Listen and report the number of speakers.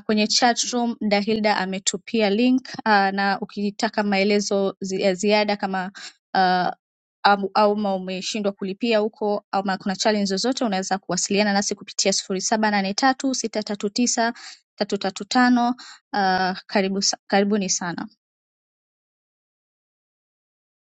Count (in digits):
1